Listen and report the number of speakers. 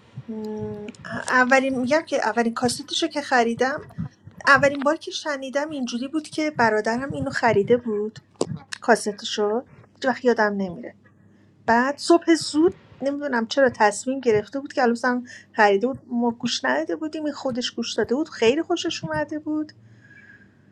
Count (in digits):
1